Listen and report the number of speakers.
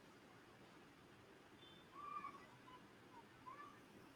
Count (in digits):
0